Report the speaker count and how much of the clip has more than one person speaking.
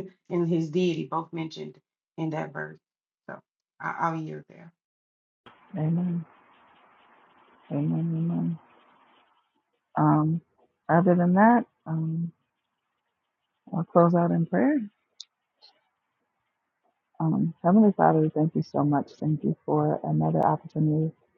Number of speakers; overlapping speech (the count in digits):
2, no overlap